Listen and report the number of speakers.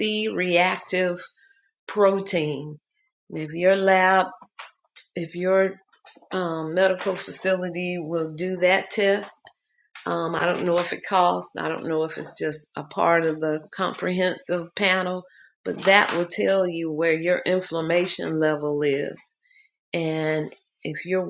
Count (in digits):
1